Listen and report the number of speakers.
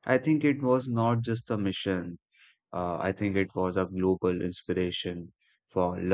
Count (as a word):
one